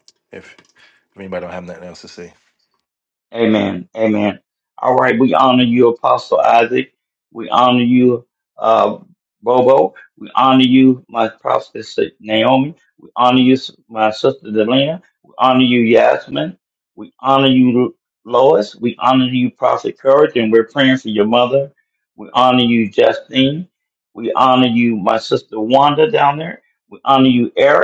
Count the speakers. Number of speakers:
two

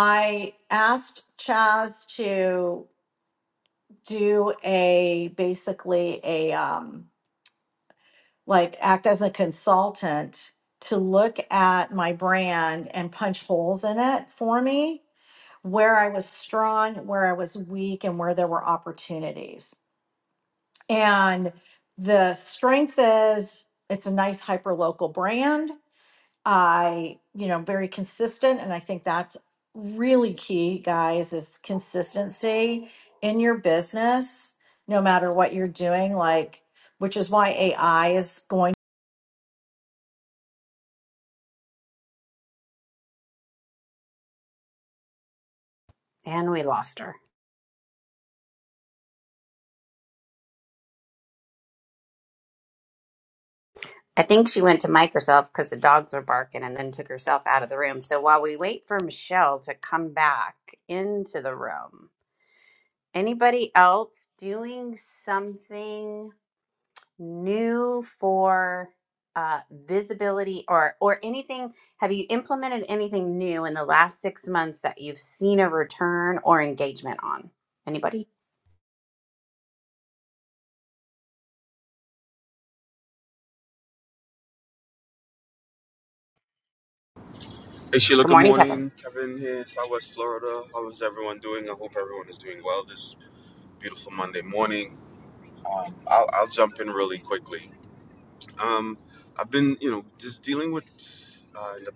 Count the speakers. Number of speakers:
three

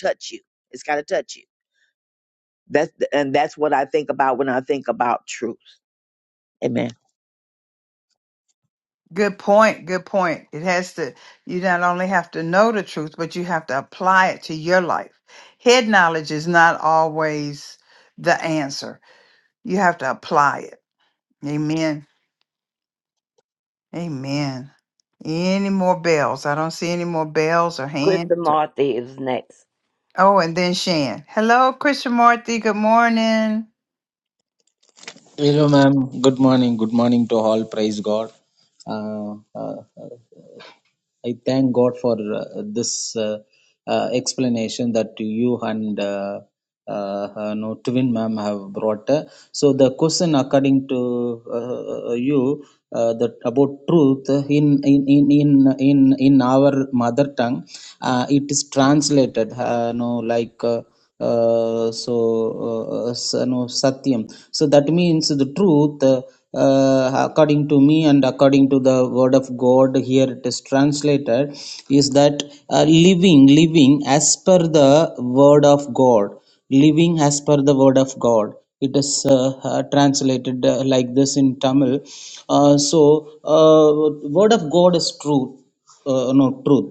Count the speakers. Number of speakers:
four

